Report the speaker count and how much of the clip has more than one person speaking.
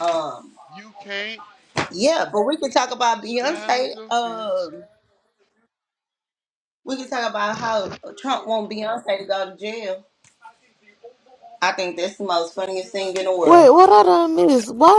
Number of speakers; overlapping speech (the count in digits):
3, about 10%